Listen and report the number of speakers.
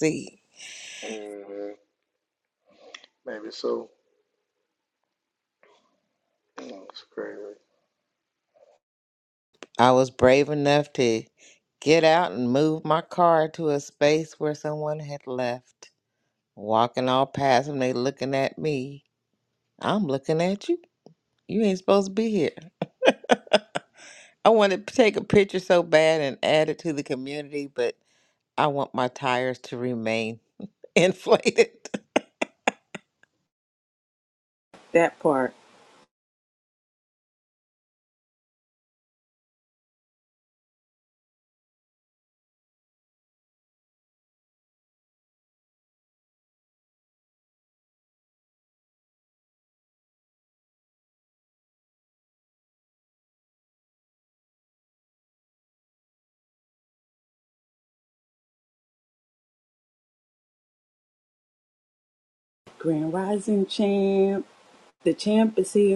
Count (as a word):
three